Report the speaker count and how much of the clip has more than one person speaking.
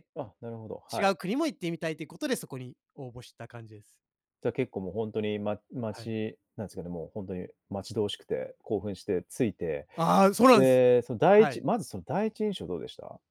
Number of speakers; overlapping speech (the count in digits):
2, about 5%